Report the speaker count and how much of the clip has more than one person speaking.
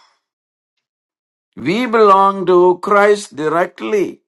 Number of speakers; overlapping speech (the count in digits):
1, no overlap